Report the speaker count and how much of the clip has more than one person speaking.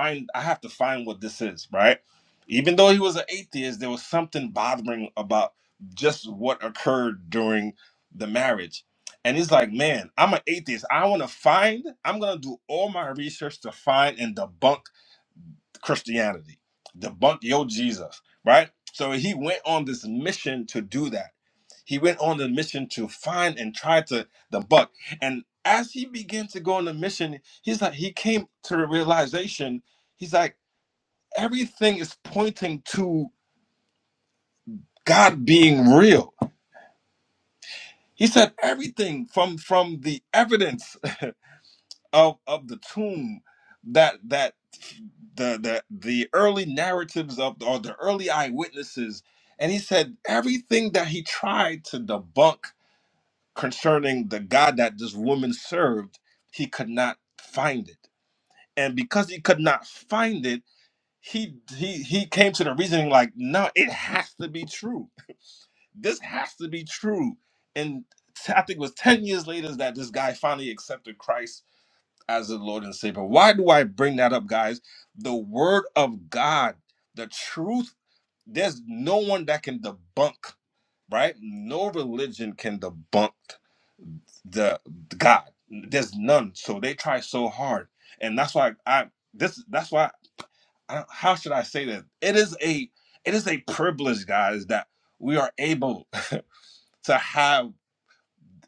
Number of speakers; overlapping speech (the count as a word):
one, no overlap